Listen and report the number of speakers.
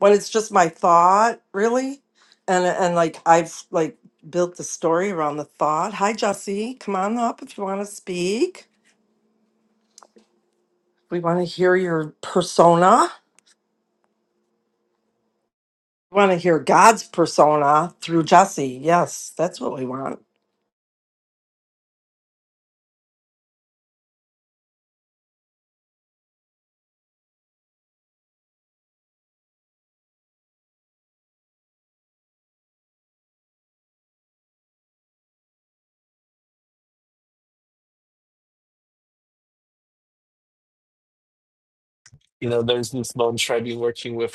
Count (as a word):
two